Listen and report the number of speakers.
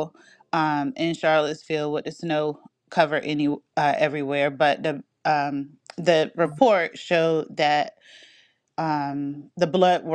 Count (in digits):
1